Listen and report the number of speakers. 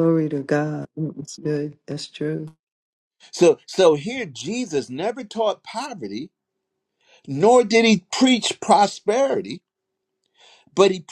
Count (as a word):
two